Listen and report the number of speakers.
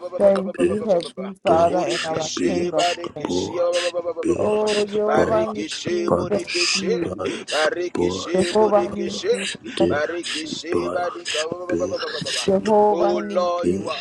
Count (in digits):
3